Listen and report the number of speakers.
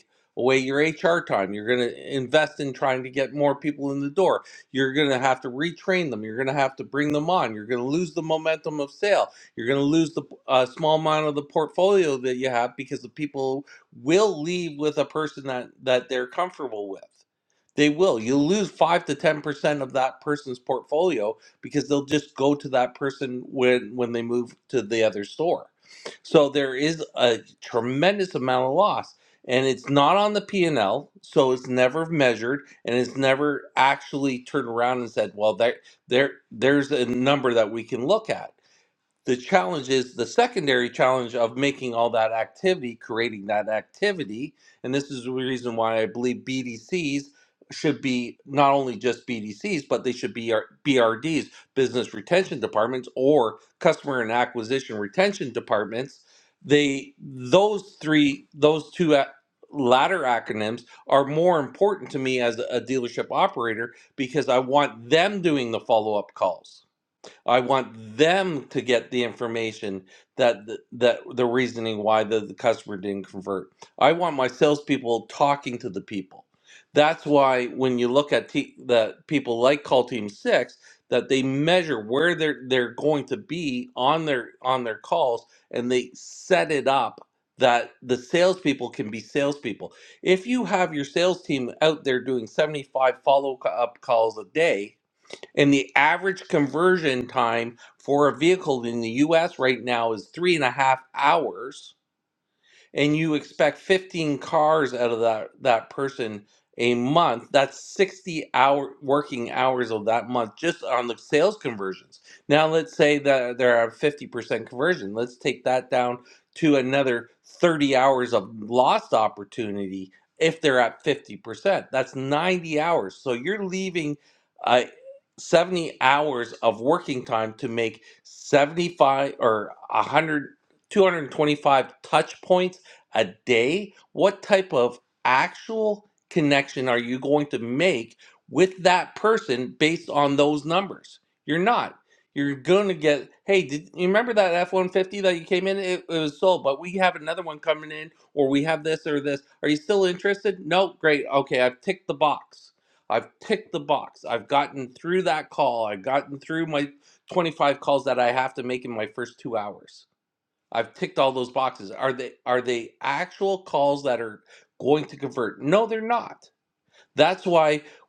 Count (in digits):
1